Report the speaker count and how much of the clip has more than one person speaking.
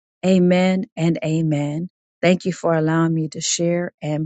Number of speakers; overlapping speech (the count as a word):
one, no overlap